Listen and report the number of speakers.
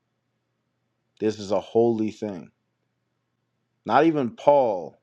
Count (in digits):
1